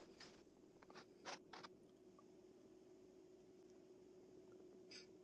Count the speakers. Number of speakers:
0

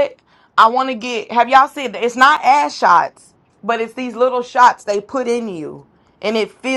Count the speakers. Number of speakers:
1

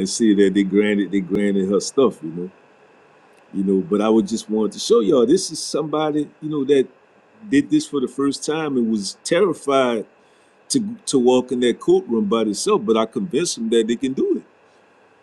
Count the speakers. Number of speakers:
1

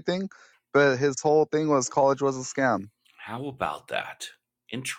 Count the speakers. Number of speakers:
2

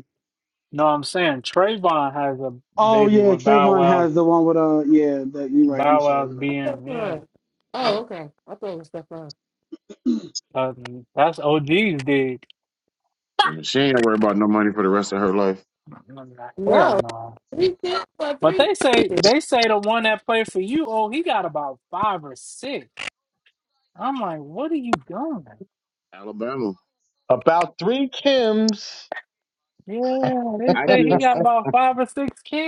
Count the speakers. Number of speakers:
5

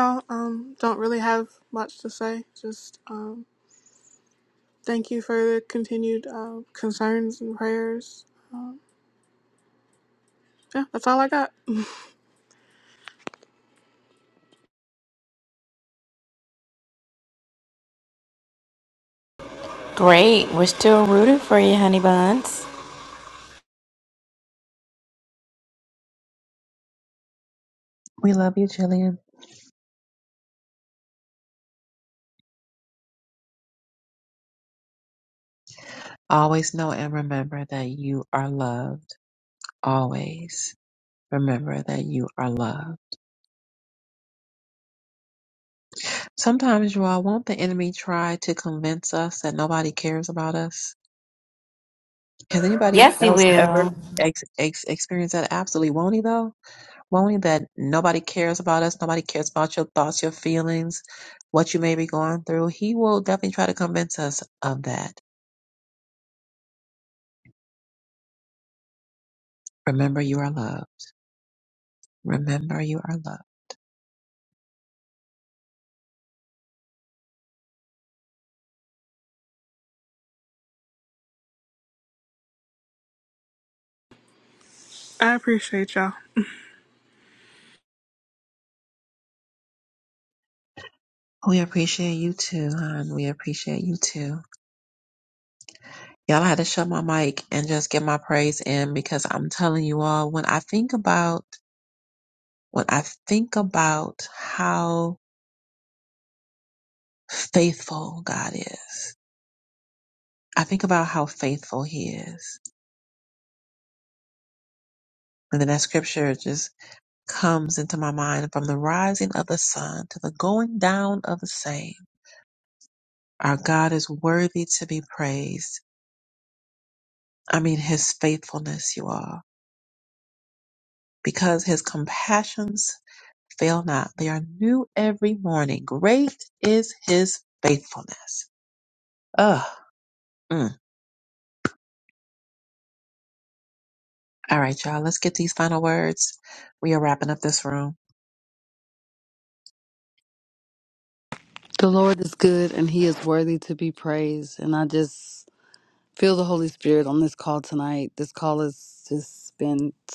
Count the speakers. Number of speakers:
4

